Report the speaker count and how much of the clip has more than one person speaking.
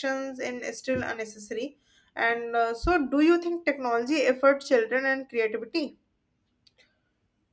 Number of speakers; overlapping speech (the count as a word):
one, no overlap